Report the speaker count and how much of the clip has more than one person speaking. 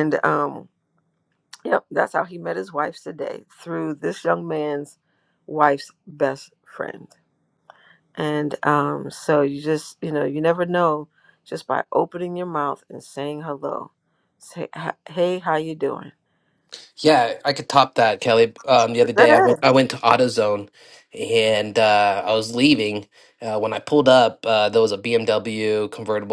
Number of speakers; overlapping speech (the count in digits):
2, about 2%